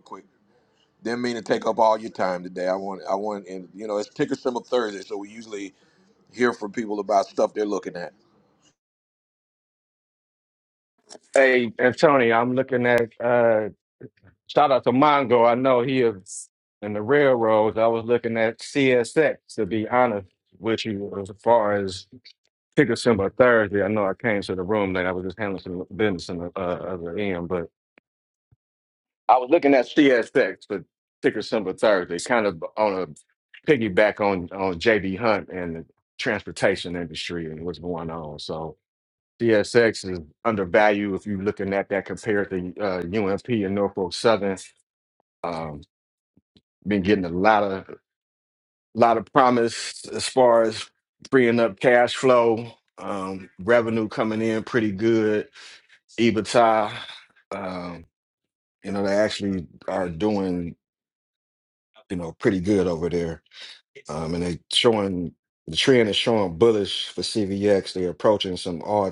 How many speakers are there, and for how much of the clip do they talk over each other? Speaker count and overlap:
two, no overlap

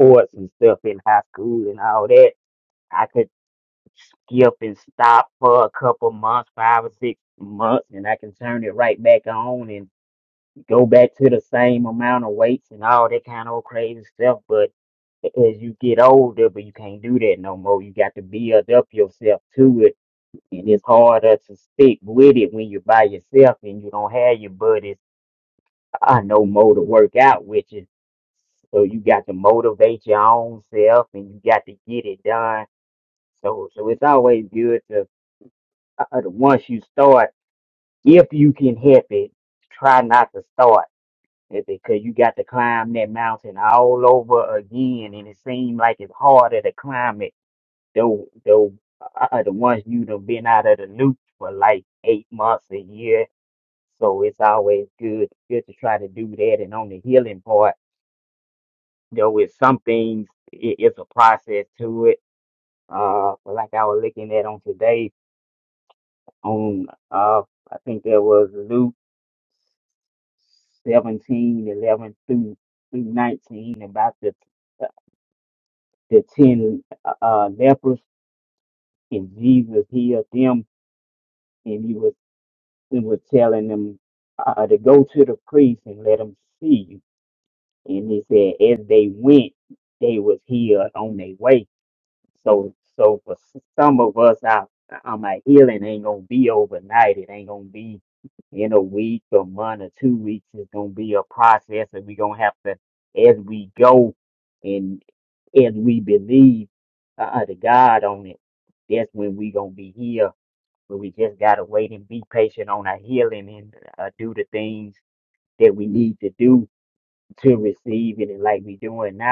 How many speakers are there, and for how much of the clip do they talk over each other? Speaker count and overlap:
one, no overlap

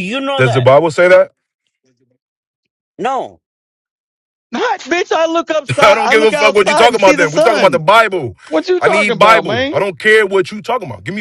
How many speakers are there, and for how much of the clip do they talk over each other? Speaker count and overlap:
three, about 29%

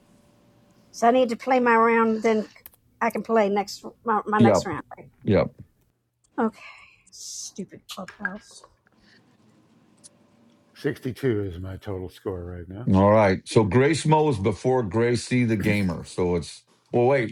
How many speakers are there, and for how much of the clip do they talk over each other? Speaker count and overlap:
three, about 2%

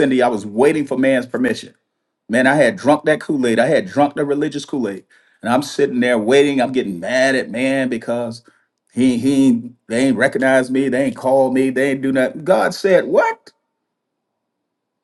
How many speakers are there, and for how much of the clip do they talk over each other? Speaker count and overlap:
one, no overlap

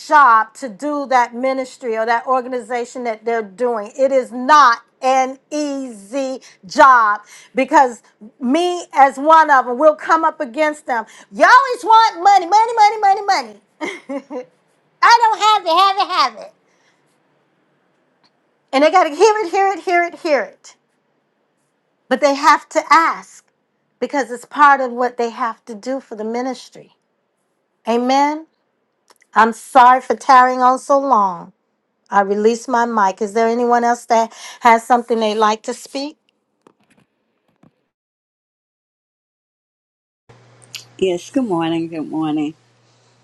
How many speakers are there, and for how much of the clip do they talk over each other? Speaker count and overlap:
two, no overlap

